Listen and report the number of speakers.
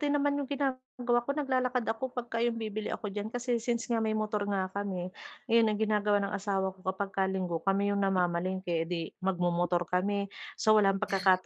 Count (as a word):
one